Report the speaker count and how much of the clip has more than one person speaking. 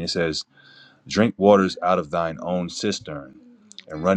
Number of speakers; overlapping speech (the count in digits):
1, no overlap